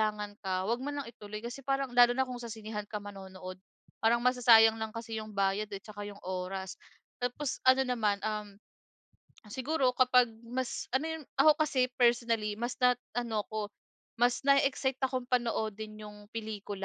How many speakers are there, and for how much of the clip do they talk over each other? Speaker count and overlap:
1, no overlap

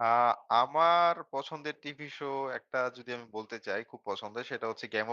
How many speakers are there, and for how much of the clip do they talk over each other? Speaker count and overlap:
1, no overlap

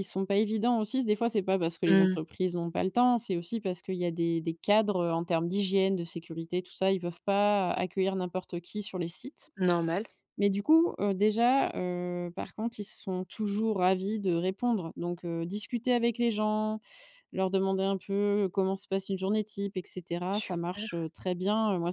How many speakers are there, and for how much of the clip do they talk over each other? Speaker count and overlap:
2, about 4%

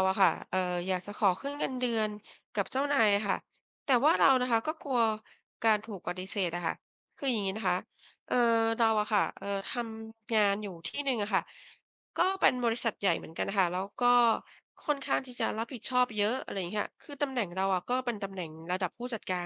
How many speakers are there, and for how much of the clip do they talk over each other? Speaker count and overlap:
1, no overlap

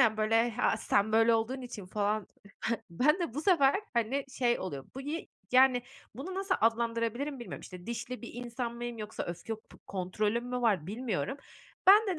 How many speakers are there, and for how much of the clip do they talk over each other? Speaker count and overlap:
1, no overlap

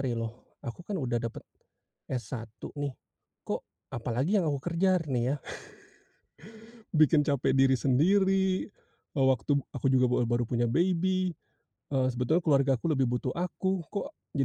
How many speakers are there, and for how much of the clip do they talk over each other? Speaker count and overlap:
1, no overlap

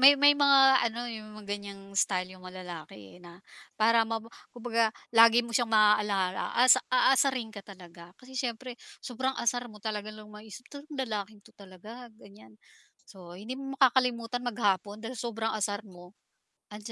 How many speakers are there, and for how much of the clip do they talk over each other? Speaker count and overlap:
1, no overlap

